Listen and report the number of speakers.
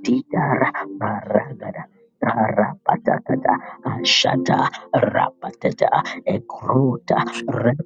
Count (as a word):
one